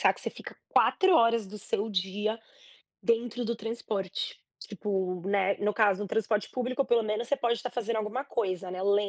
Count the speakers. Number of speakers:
one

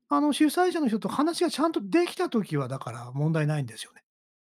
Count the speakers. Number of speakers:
one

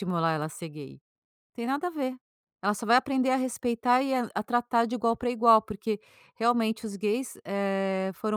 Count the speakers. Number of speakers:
one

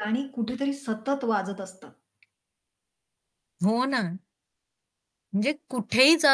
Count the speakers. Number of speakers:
two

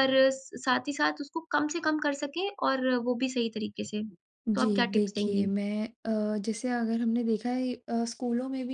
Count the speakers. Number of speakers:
two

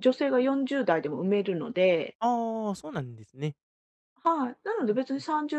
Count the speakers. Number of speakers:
two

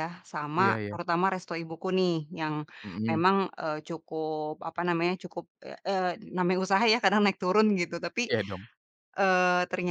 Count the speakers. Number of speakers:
two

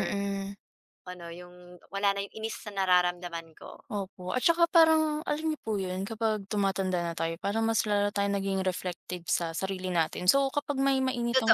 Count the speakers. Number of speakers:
two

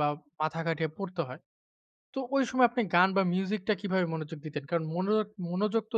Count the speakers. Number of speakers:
one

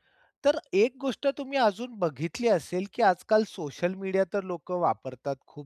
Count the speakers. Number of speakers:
one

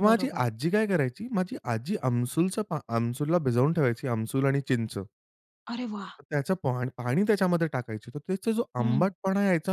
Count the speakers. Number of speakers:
two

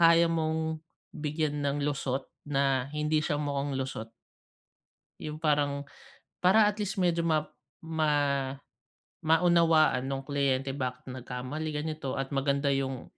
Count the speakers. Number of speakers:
one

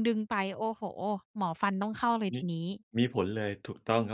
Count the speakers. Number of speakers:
two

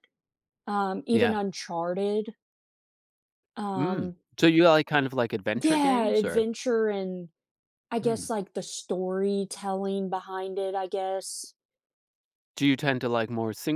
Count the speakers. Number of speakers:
two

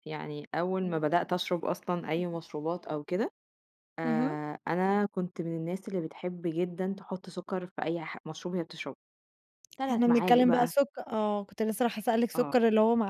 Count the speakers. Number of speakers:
two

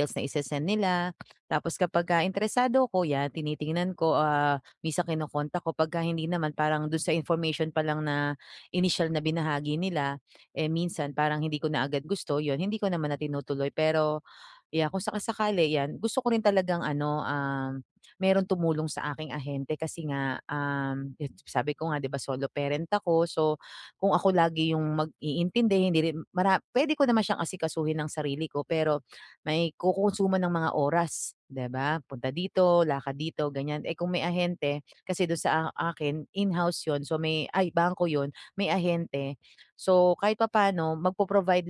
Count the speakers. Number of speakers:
one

